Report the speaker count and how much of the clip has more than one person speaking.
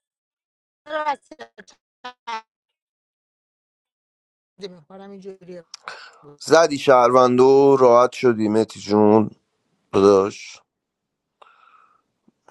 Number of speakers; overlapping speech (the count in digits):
2, no overlap